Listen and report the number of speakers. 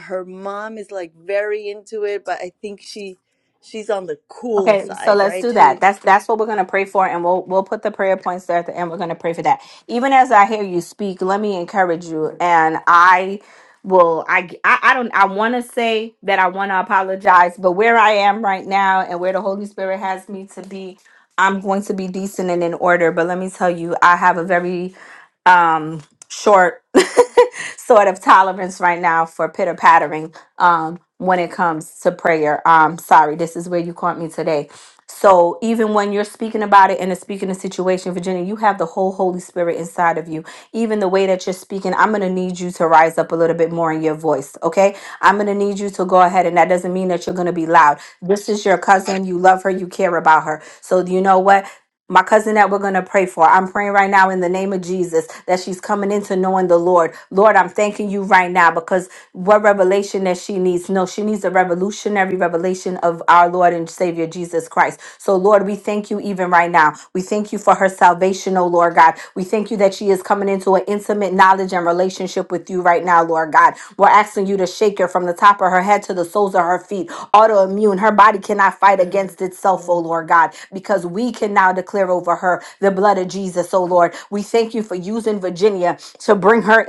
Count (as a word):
two